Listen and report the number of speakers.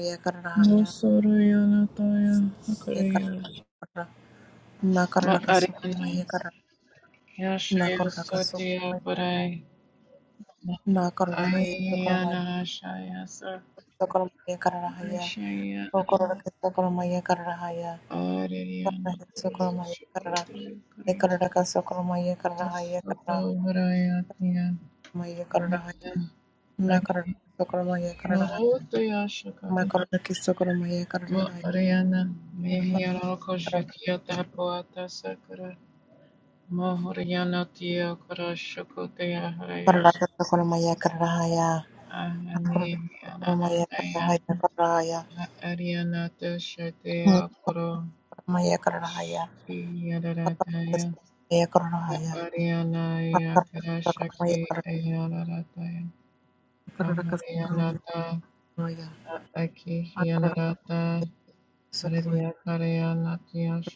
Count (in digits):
2